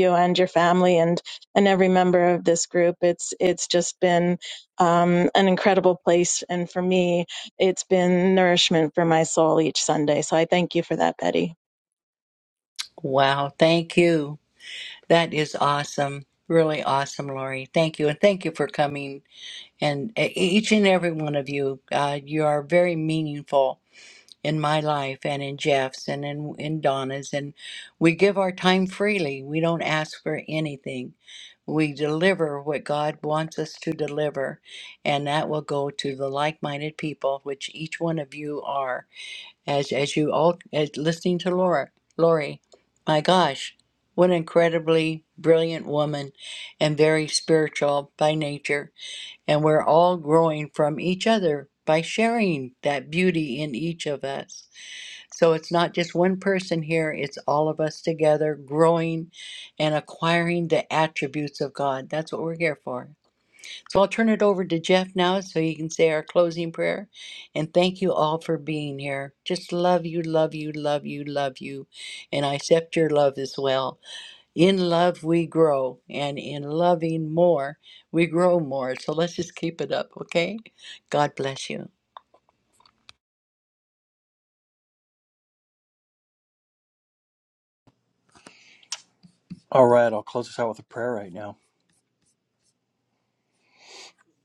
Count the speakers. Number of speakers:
three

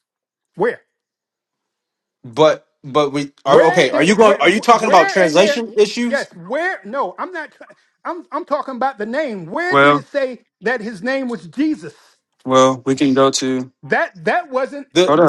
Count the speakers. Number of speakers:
three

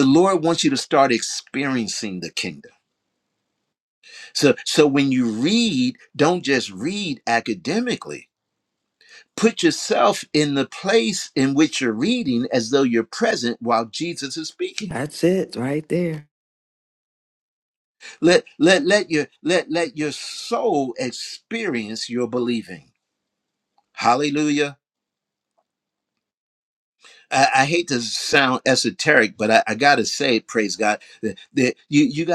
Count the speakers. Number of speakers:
two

